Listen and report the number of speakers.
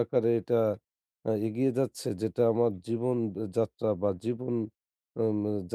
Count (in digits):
1